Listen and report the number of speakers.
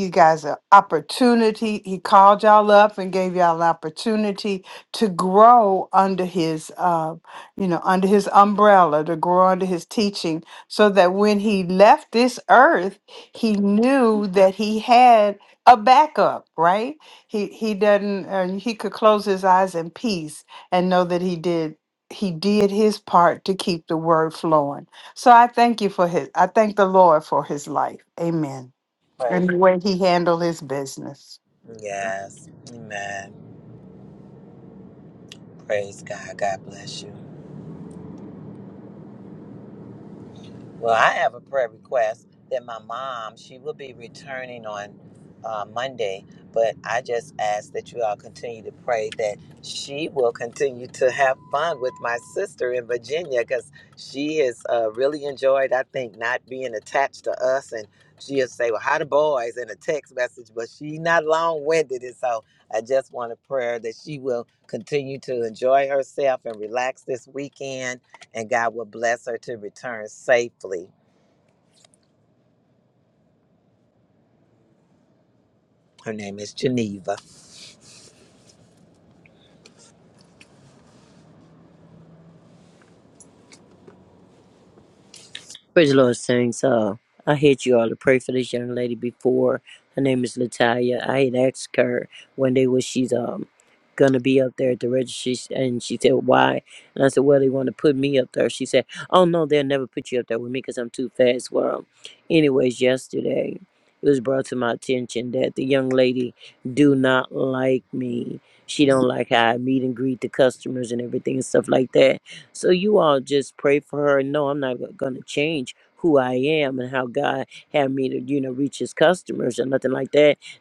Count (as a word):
three